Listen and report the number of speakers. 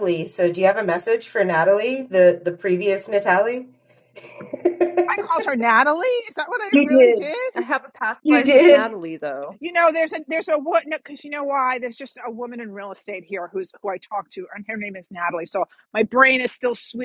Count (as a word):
three